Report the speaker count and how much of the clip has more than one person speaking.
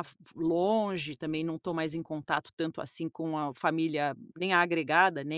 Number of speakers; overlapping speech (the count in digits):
1, no overlap